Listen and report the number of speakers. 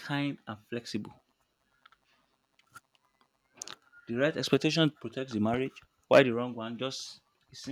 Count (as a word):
one